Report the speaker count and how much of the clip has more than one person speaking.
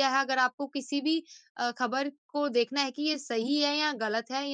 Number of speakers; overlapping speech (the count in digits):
1, no overlap